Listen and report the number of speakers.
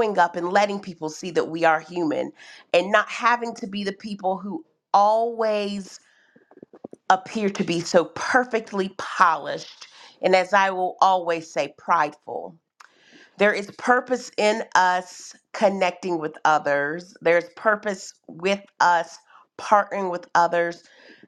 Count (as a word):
one